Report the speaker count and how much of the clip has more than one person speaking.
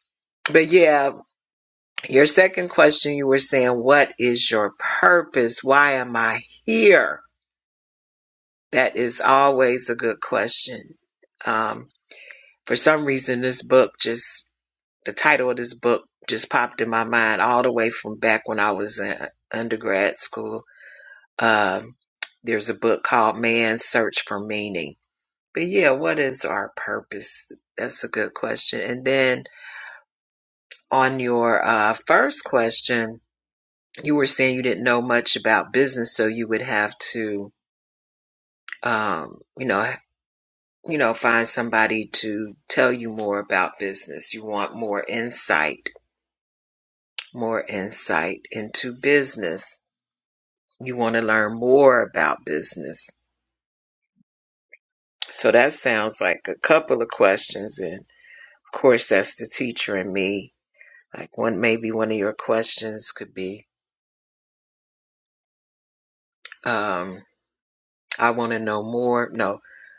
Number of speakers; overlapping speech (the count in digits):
1, no overlap